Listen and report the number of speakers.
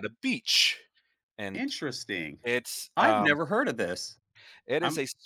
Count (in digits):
2